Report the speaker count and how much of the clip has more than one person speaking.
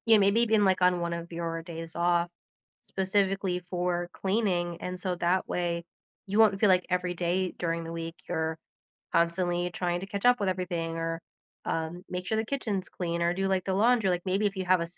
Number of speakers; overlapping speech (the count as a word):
one, no overlap